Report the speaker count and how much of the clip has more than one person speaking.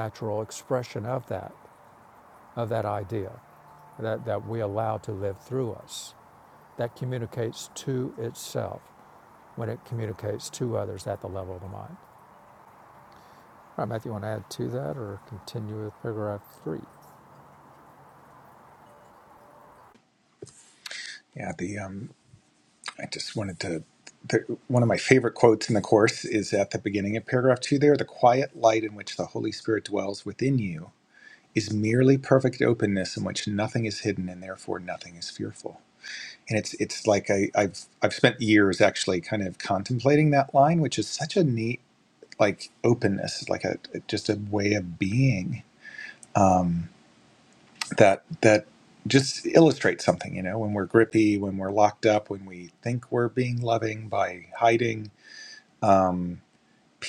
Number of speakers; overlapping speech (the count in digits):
2, no overlap